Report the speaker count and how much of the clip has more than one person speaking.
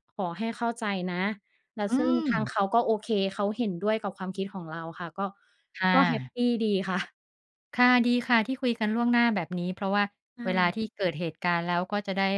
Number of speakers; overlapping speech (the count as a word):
two, about 8%